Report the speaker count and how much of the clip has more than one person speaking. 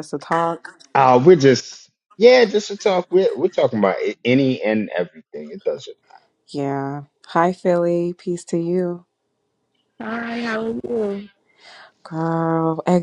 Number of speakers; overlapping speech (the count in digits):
3, no overlap